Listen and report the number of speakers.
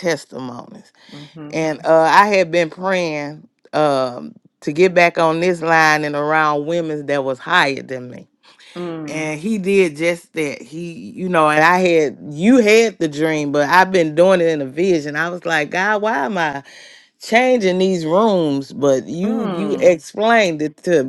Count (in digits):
2